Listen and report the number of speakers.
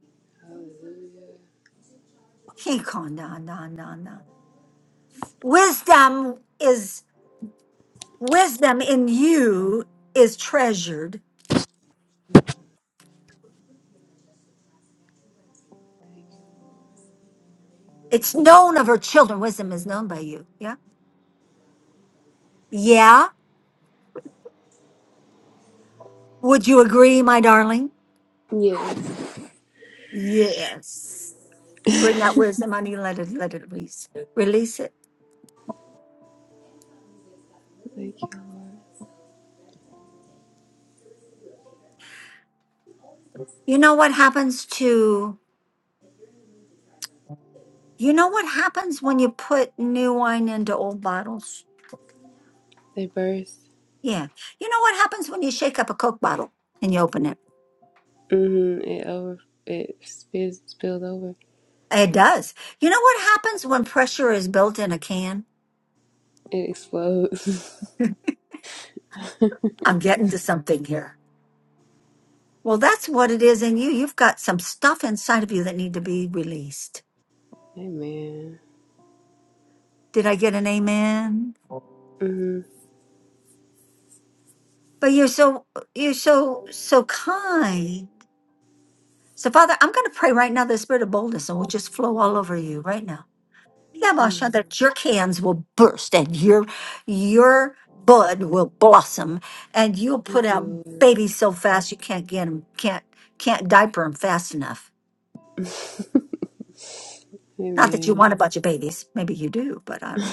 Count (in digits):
2